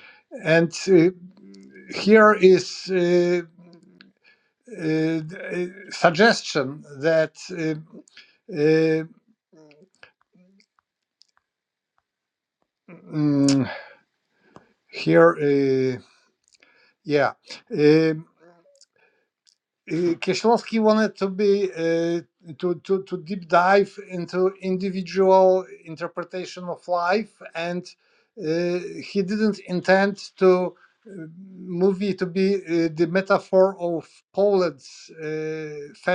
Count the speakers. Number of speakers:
one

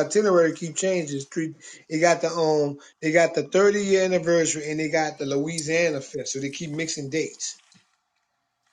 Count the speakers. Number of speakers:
one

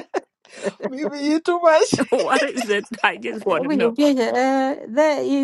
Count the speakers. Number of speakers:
three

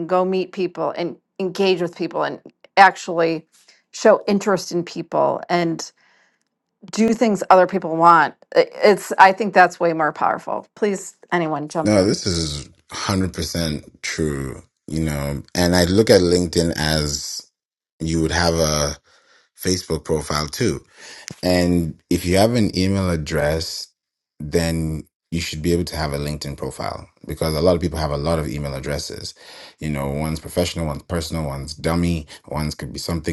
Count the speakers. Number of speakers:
two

